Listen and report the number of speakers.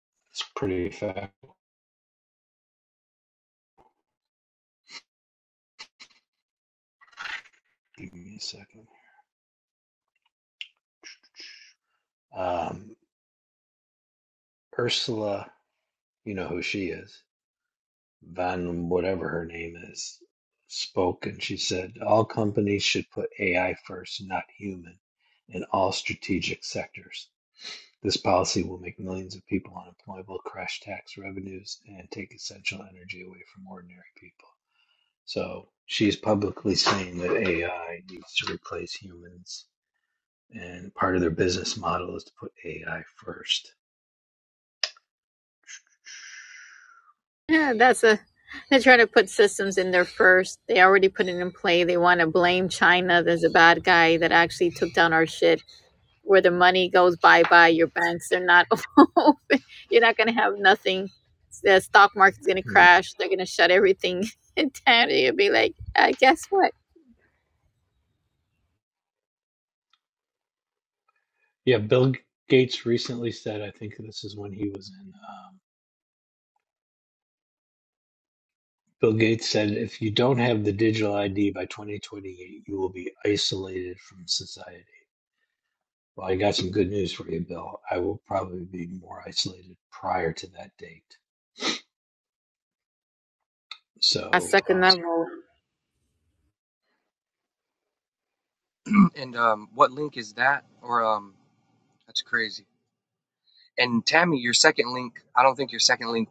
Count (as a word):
three